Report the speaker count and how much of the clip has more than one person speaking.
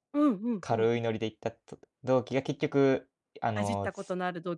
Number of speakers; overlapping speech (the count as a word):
two, about 12%